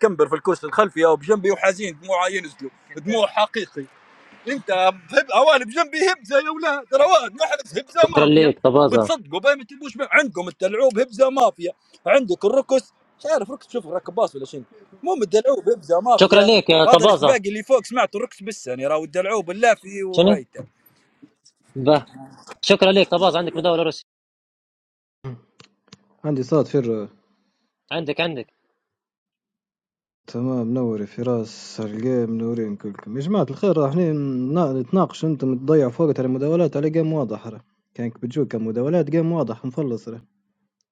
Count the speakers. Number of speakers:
3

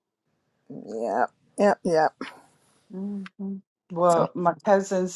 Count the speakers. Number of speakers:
2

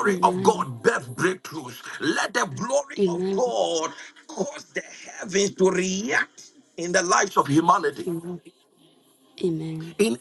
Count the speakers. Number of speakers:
2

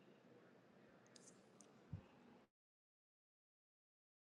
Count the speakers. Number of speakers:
0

